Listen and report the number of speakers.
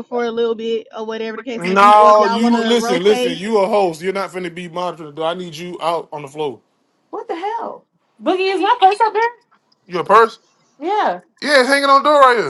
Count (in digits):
3